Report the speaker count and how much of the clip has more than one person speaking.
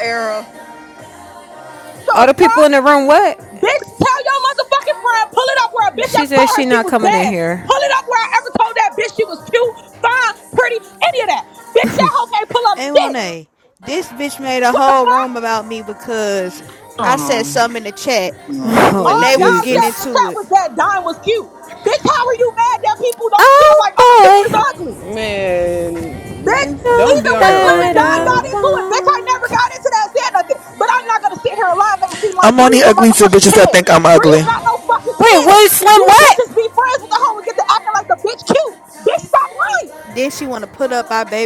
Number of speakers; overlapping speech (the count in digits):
6, about 27%